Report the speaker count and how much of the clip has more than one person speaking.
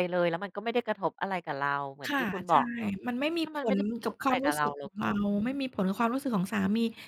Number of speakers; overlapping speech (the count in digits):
2, about 31%